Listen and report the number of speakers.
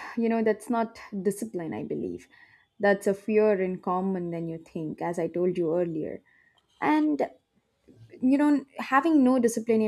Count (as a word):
one